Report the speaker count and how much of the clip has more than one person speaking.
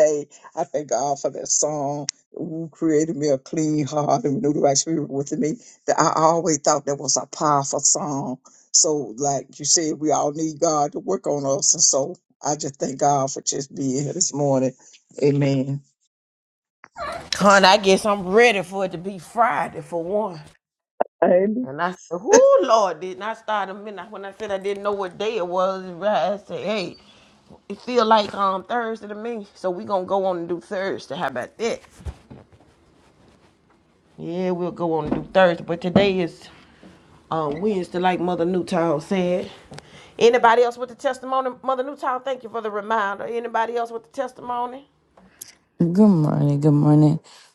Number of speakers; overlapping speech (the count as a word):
three, no overlap